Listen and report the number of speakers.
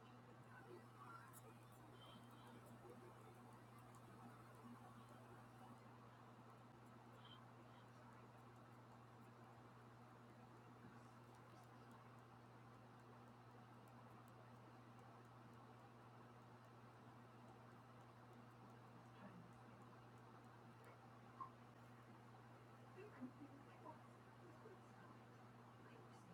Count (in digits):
0